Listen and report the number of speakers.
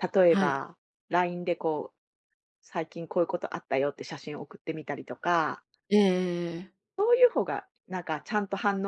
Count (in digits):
2